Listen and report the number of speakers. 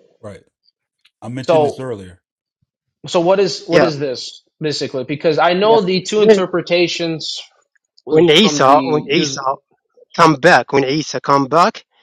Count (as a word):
three